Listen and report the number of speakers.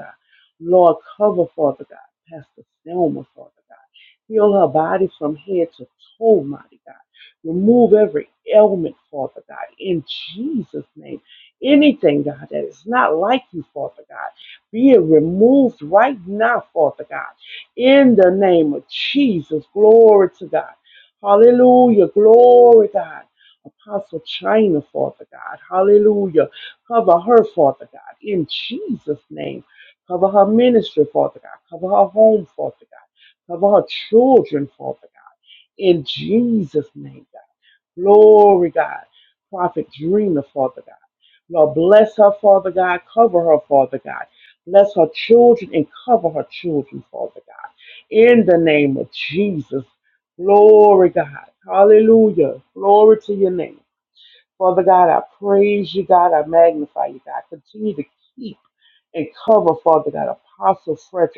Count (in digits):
1